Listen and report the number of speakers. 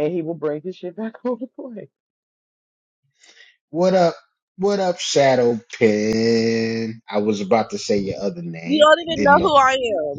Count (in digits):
3